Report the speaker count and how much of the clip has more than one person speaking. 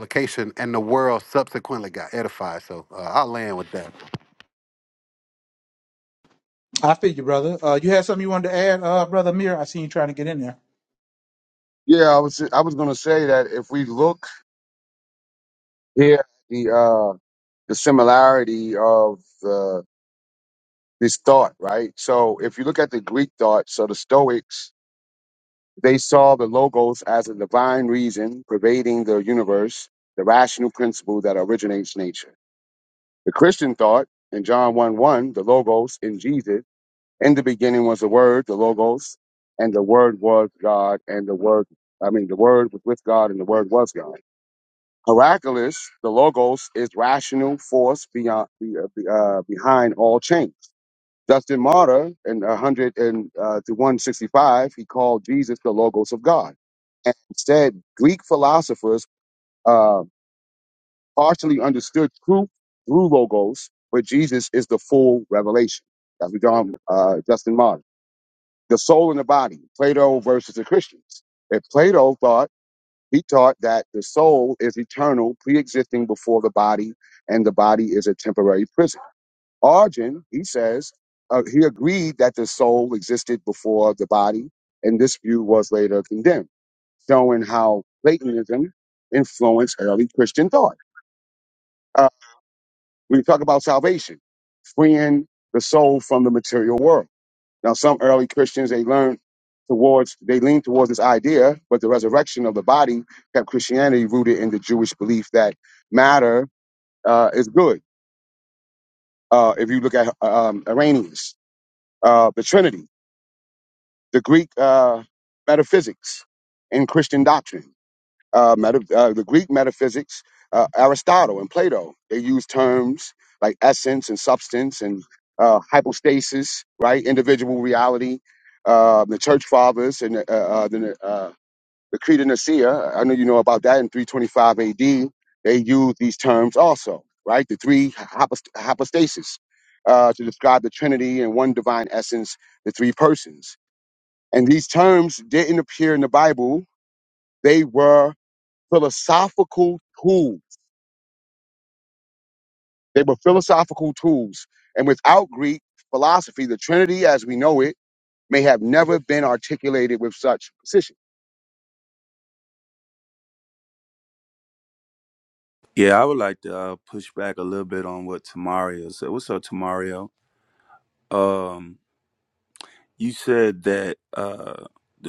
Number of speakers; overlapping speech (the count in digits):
4, no overlap